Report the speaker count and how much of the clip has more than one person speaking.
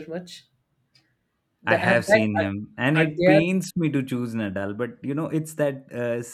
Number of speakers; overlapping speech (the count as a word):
two, about 21%